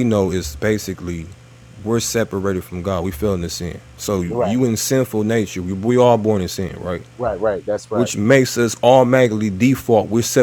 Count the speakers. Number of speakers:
2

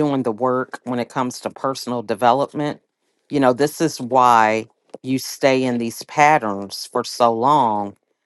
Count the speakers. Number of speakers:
1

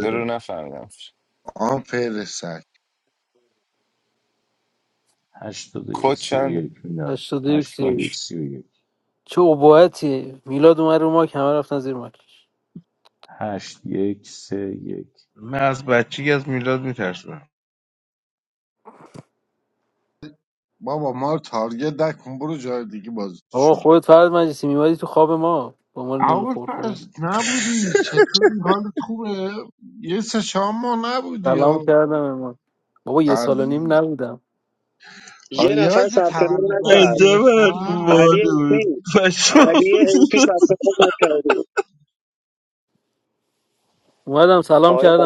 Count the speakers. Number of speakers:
6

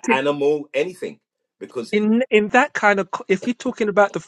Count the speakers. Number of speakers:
2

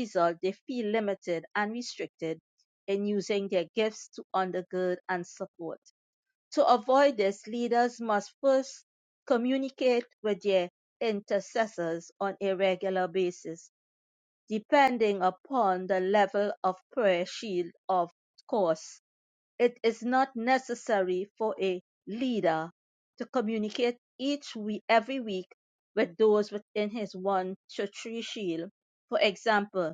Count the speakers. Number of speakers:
1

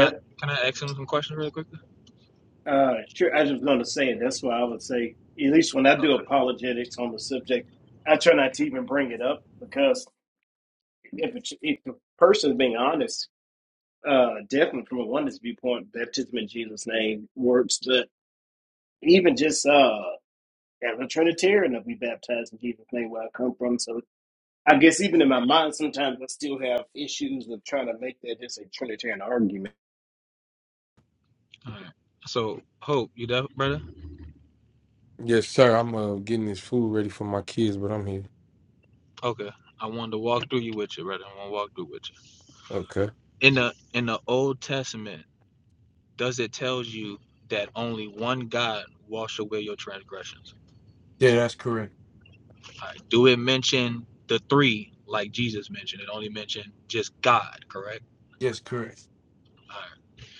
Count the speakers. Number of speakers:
3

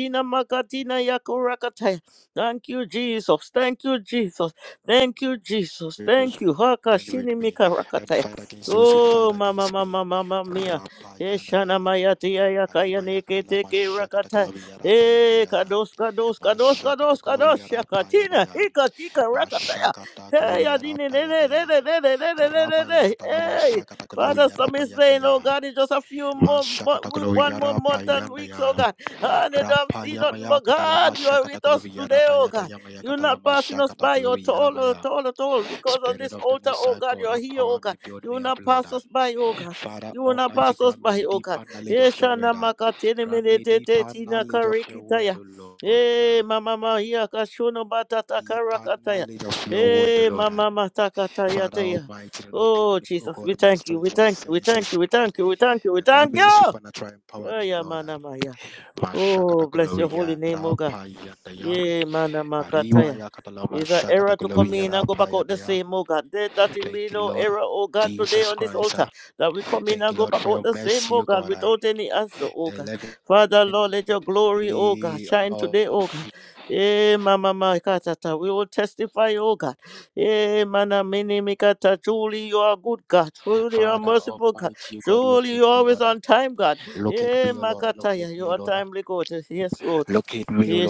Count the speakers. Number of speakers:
2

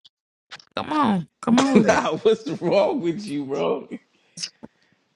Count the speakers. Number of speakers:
2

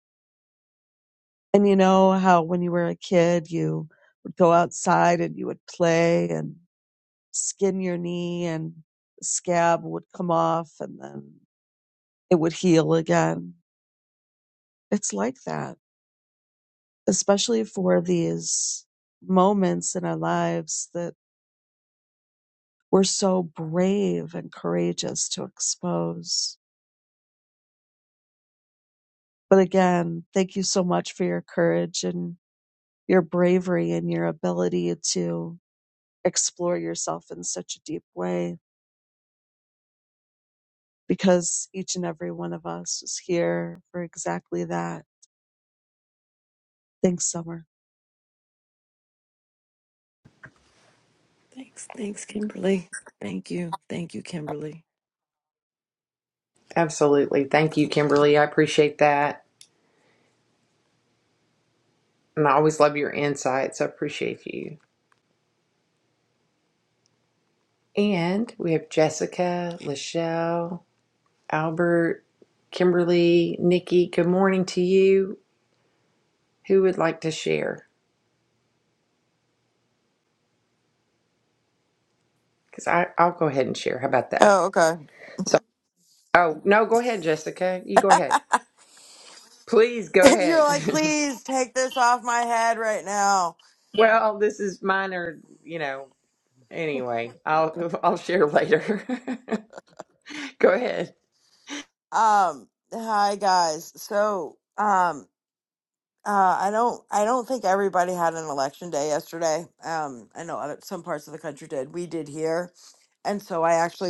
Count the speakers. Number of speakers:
4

